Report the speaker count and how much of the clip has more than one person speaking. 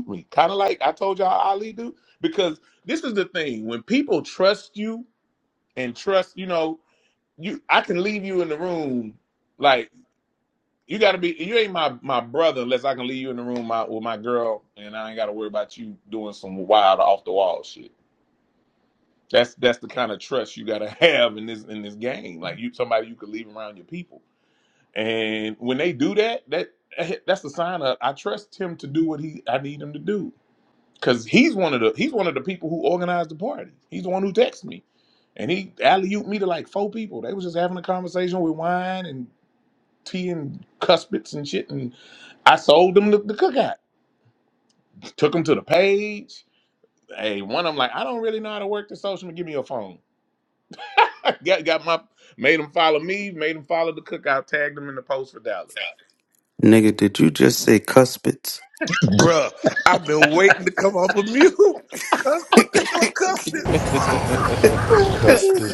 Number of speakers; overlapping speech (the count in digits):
4, under 1%